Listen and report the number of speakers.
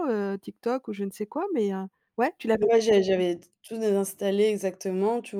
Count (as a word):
two